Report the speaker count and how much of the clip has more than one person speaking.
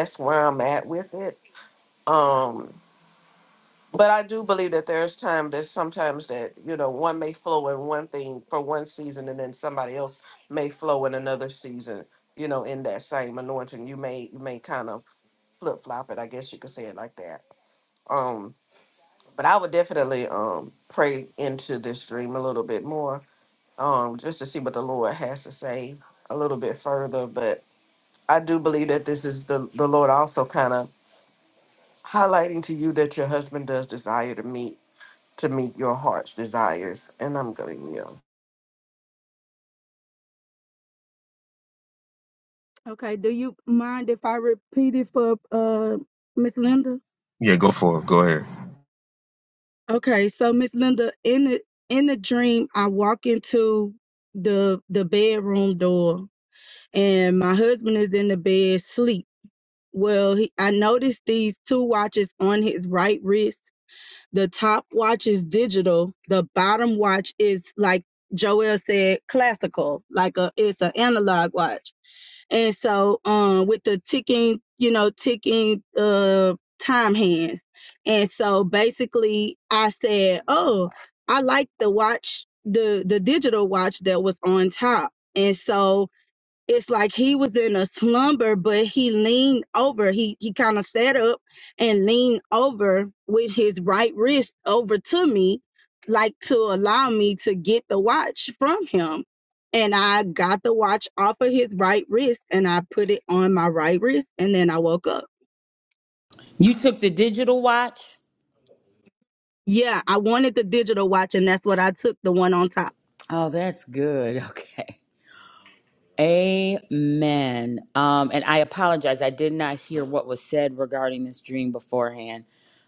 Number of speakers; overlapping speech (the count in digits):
4, no overlap